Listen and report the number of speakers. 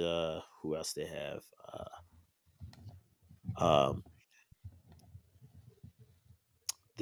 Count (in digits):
1